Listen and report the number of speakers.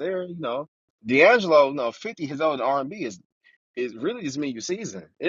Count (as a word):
one